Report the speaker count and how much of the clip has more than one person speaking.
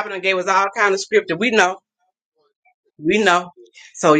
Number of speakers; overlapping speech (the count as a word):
one, no overlap